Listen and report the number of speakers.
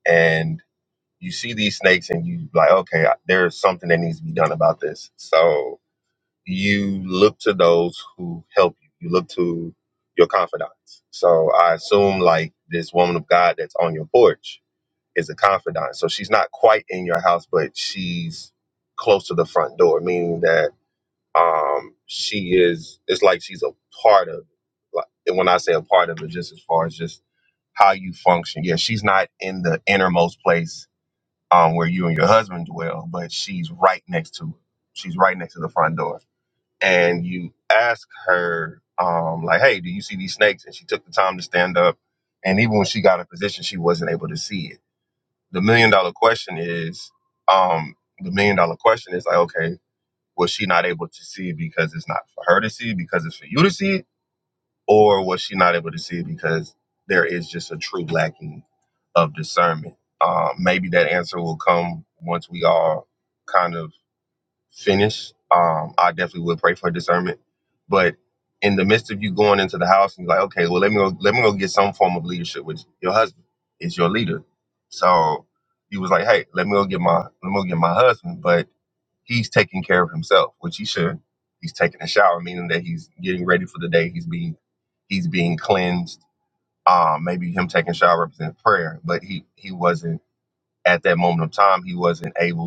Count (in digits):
1